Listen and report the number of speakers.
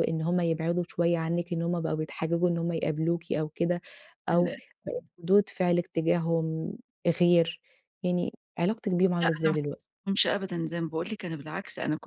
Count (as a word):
two